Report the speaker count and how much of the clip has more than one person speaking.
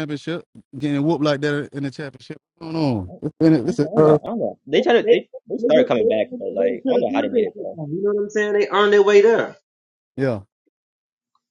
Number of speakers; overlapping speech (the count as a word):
three, about 28%